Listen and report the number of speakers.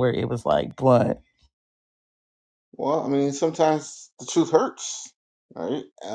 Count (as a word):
two